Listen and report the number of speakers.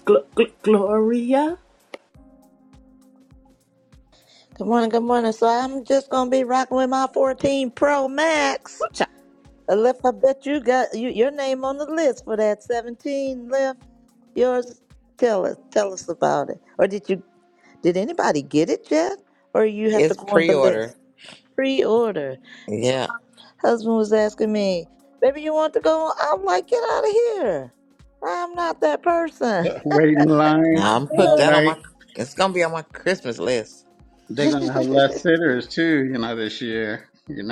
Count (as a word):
four